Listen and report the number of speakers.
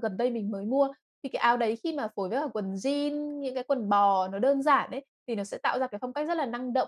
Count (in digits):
1